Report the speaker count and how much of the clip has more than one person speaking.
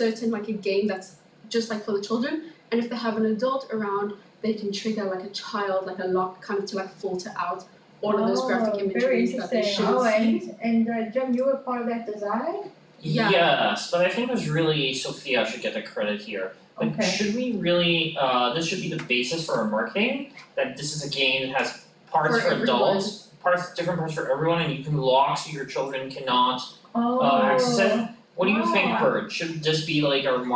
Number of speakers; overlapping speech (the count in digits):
3, about 18%